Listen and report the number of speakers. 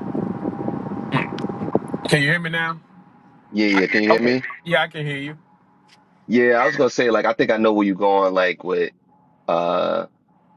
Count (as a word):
two